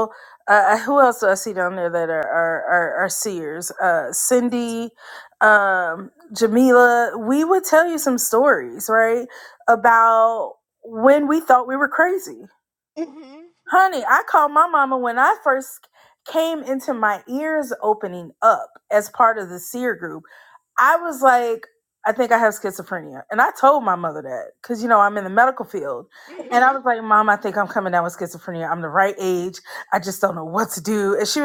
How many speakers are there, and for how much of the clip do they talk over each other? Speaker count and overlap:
2, about 1%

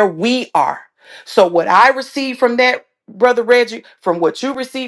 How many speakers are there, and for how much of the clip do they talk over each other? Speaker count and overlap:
1, no overlap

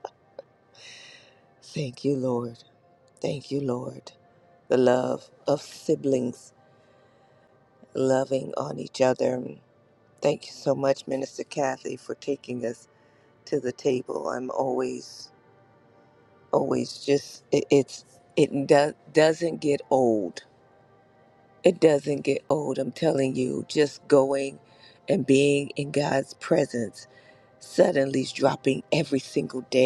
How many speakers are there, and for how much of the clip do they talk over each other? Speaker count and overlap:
1, no overlap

